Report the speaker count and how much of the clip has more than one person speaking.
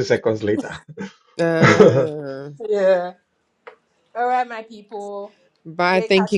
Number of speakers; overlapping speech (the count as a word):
three, about 15%